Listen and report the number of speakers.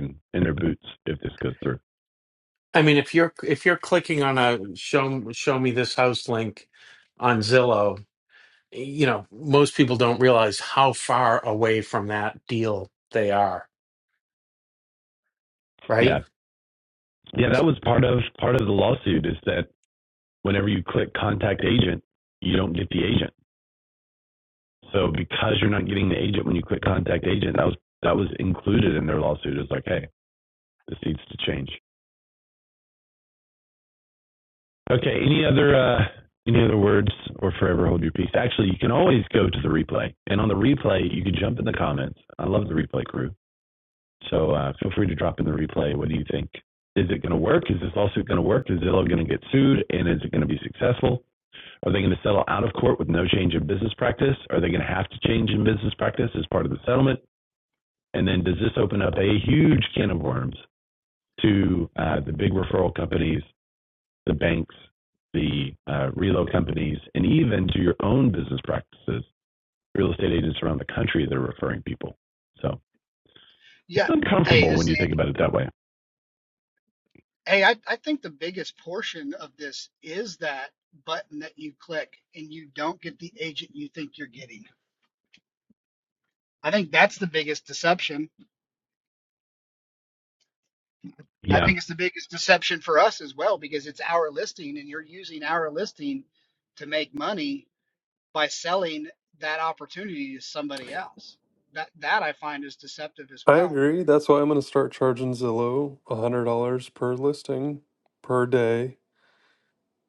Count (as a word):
four